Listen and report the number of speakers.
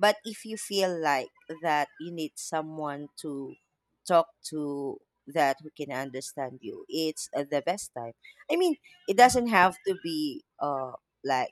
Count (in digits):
1